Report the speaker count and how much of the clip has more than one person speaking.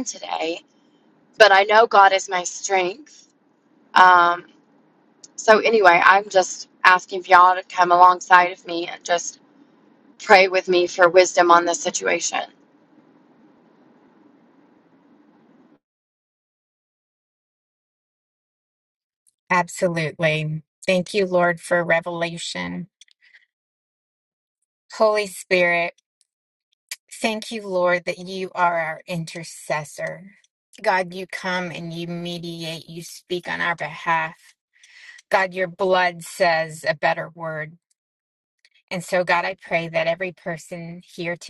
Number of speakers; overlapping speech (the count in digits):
2, no overlap